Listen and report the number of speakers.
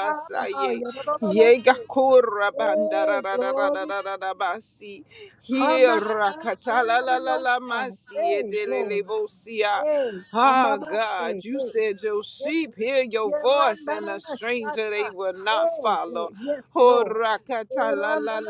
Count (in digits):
2